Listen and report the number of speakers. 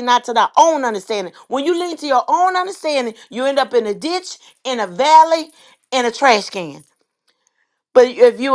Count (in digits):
1